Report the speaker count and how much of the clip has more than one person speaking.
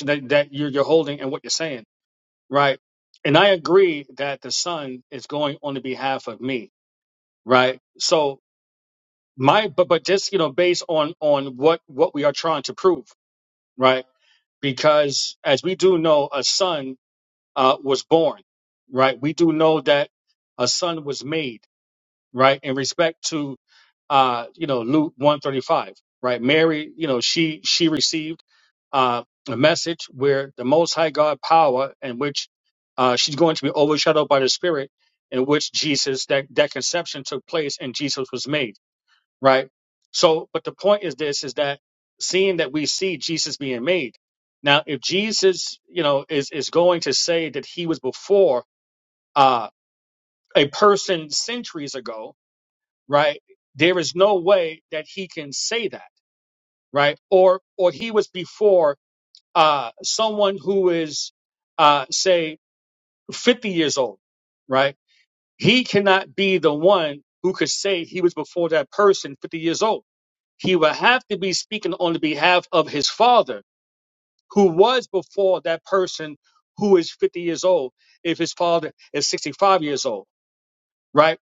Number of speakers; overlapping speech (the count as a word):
one, no overlap